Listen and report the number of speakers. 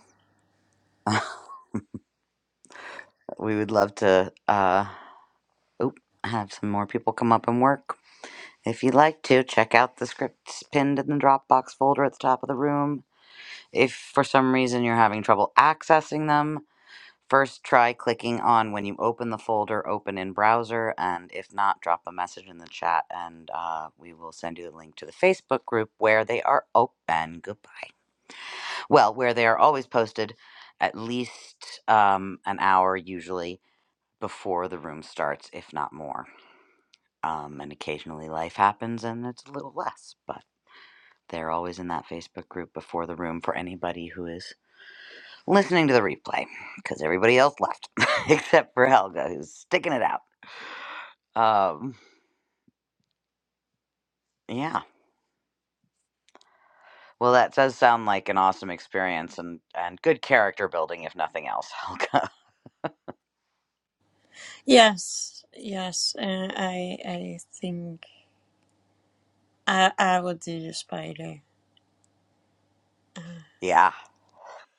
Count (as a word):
two